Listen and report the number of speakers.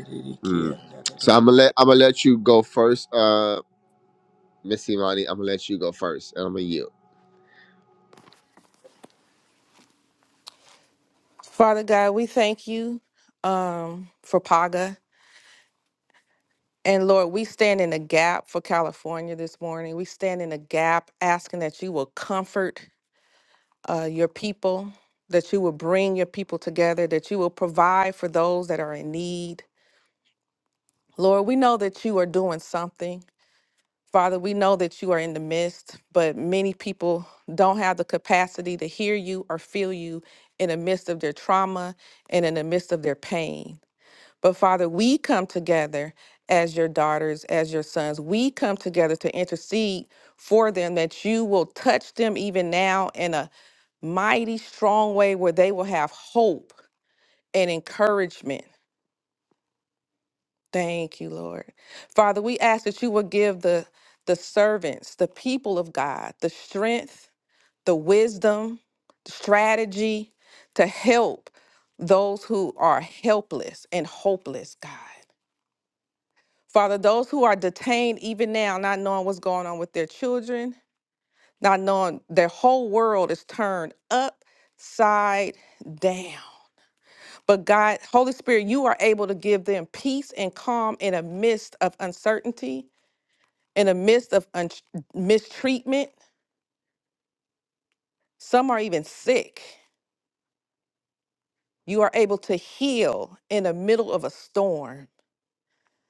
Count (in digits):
2